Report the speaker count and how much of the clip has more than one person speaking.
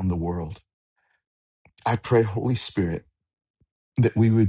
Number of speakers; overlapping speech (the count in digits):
1, no overlap